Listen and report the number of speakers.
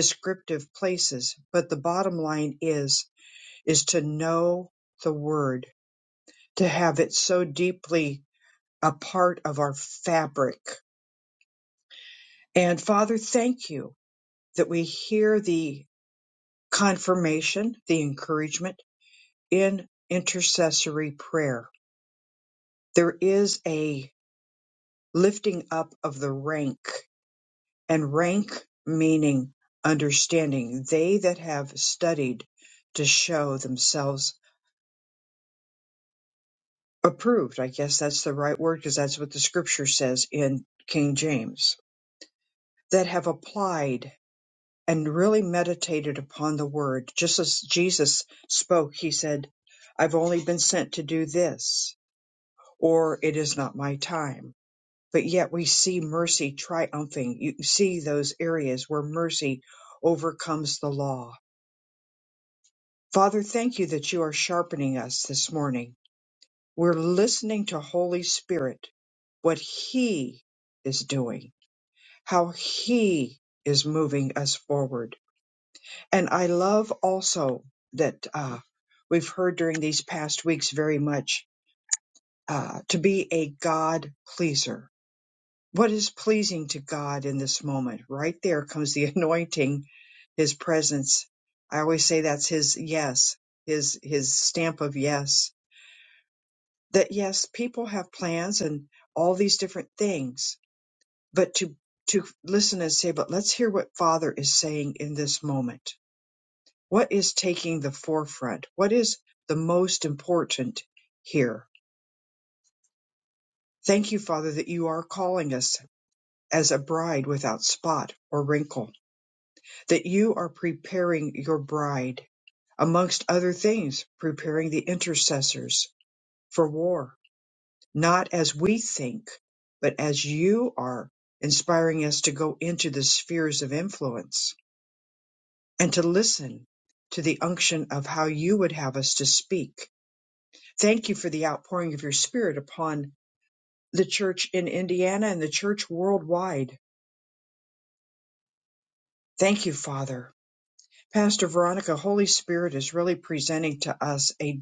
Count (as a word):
one